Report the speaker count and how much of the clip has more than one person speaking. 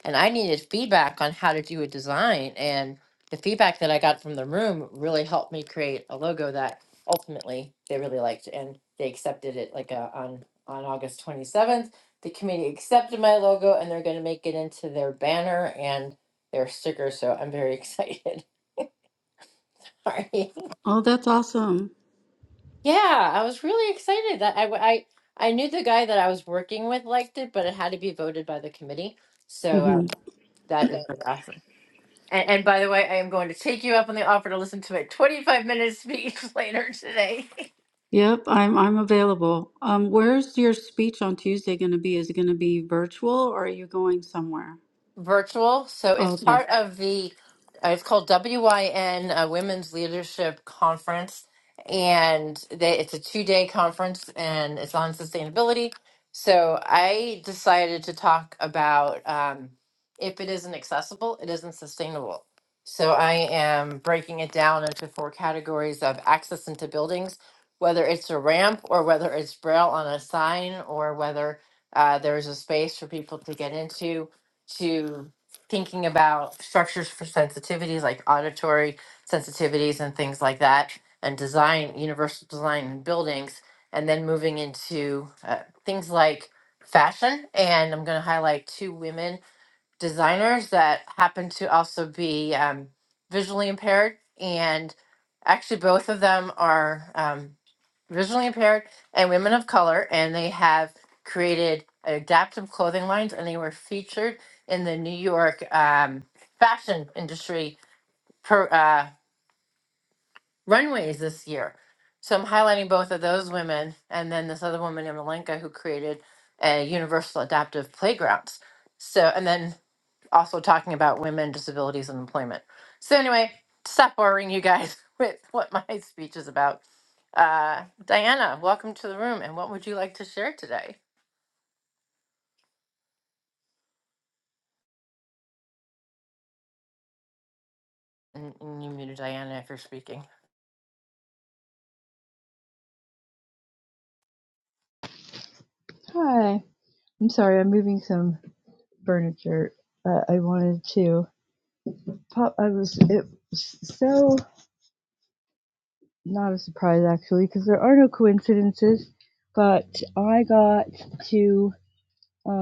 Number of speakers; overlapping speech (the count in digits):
3, under 1%